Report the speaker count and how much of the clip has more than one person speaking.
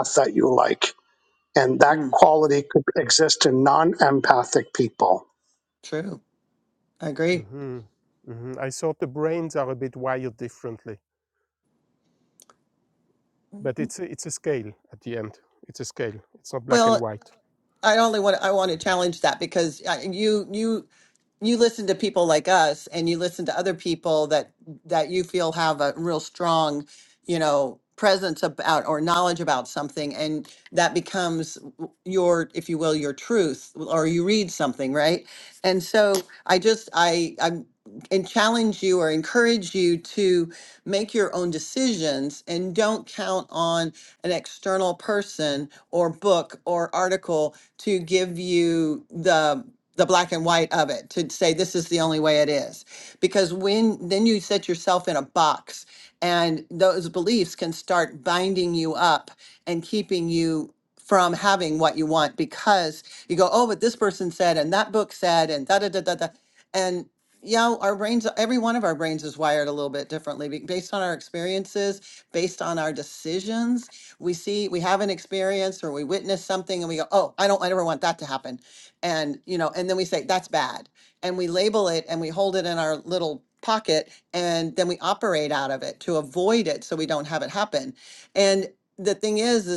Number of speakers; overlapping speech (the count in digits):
3, about 1%